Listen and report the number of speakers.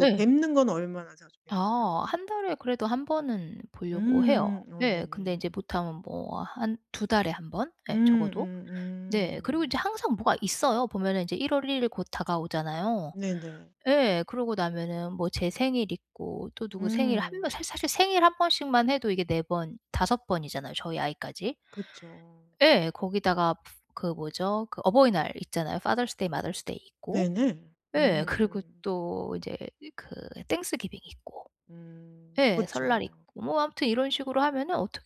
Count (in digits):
2